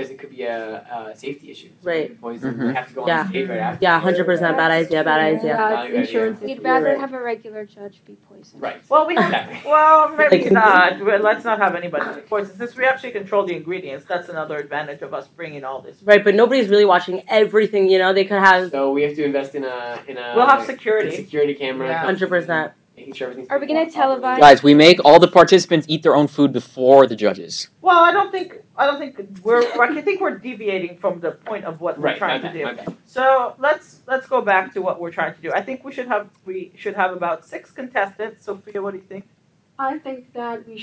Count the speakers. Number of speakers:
6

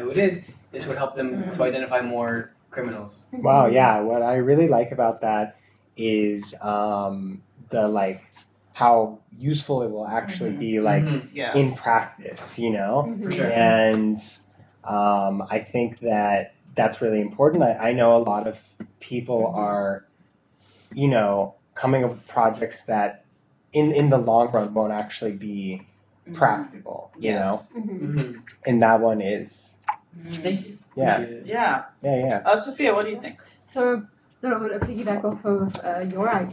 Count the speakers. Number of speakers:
4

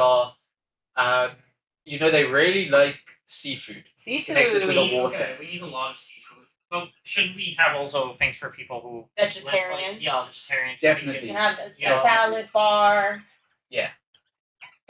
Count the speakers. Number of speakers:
3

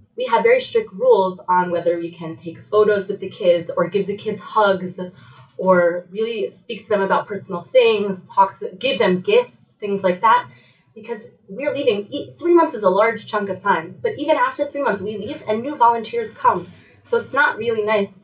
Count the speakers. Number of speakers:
1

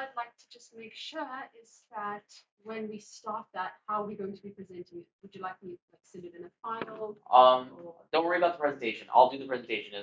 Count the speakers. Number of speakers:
2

